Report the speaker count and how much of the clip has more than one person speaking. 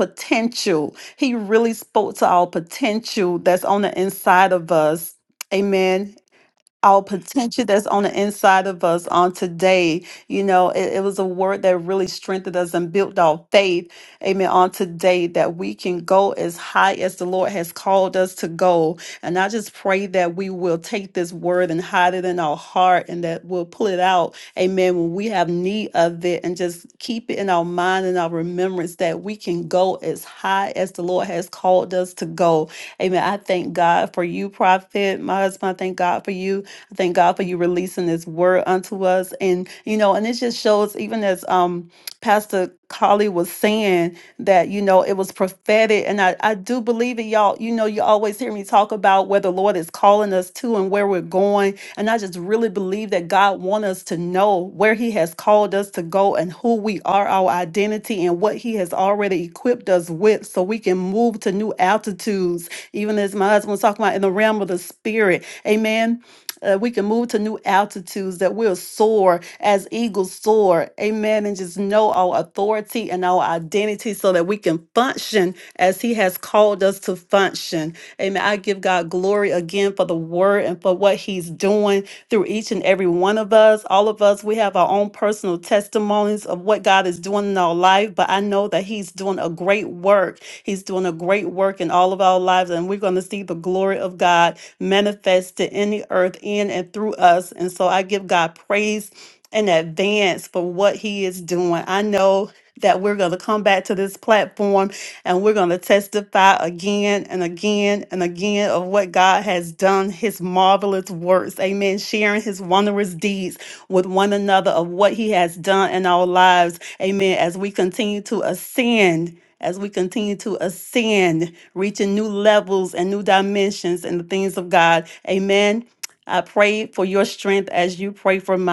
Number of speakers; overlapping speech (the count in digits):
1, no overlap